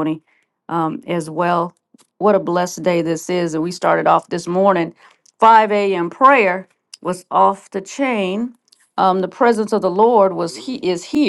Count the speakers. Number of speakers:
1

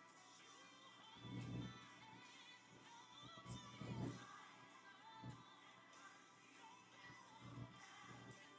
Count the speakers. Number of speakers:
0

